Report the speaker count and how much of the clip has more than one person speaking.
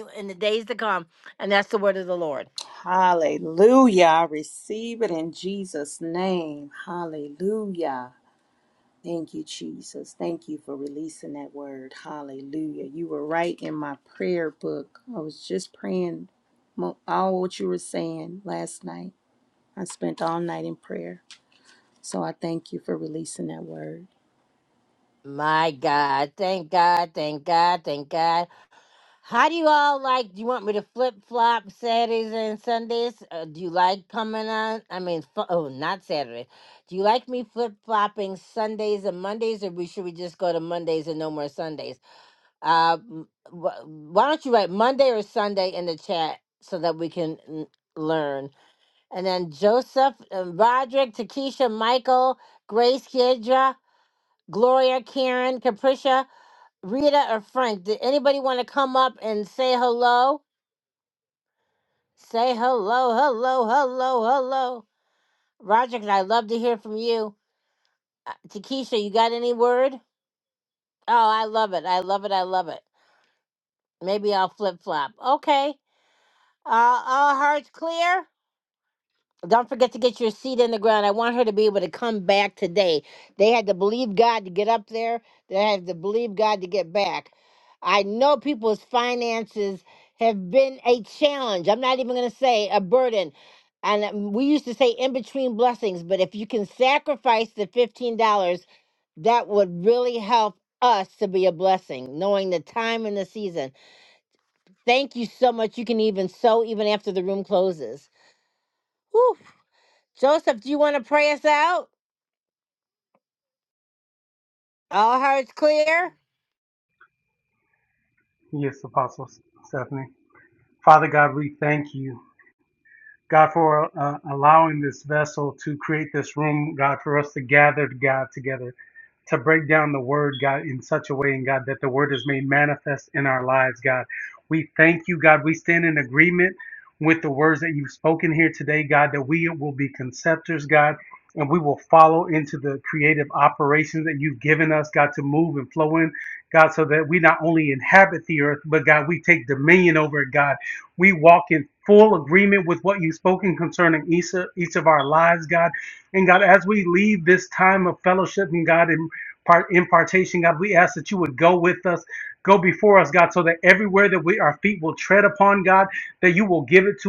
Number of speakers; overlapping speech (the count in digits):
3, no overlap